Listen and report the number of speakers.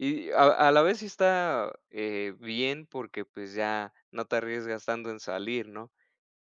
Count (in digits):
1